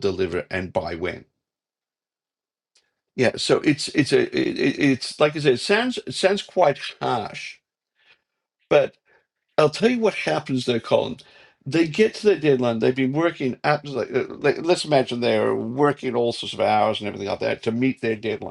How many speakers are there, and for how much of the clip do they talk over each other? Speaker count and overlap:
1, no overlap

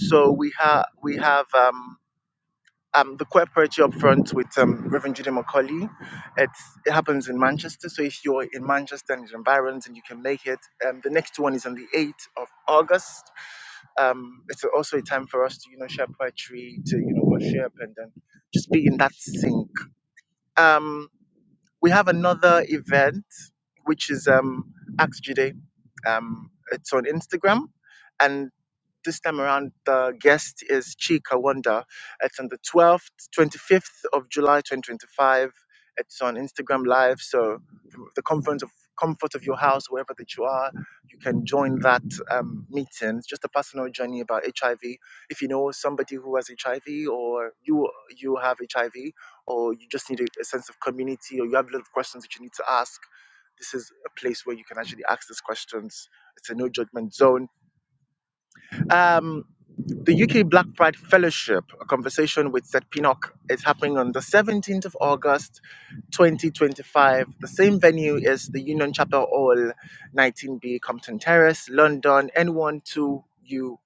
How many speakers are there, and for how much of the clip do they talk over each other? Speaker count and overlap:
1, no overlap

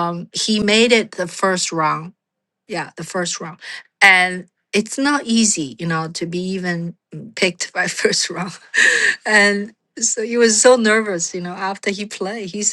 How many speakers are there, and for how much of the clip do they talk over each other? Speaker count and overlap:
1, no overlap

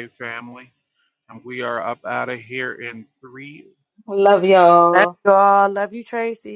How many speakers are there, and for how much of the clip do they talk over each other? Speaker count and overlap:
3, about 3%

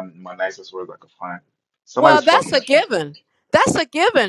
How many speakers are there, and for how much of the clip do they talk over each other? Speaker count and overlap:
2, about 15%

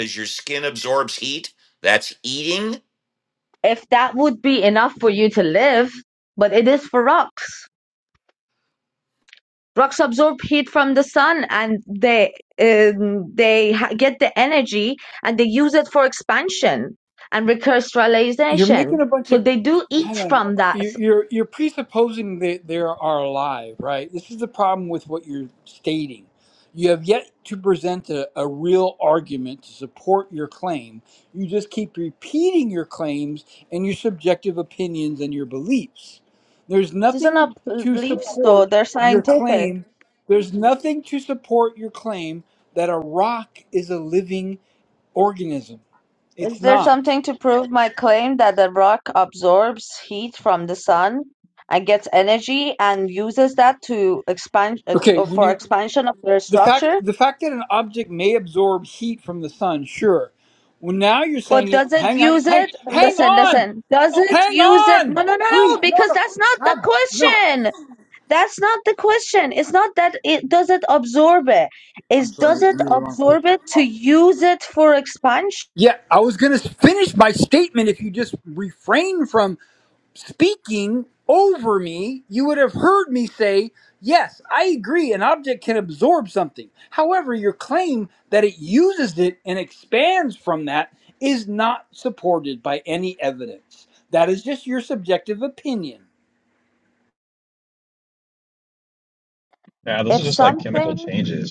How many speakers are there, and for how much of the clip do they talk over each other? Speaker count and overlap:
4, about 10%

